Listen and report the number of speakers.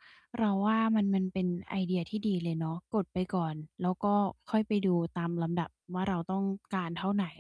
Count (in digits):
1